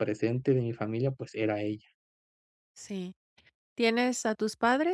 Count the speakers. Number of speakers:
2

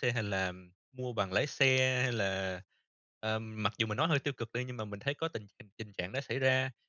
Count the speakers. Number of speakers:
1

